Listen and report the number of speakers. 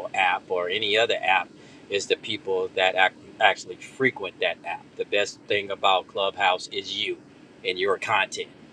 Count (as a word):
one